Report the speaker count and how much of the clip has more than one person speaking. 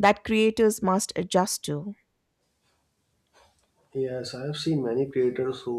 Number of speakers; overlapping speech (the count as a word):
two, no overlap